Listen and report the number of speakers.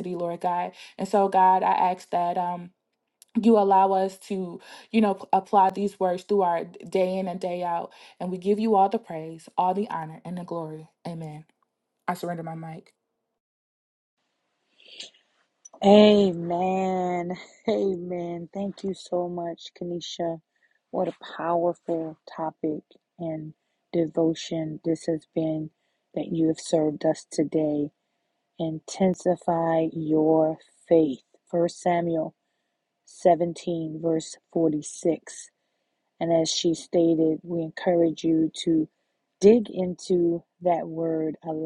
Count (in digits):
2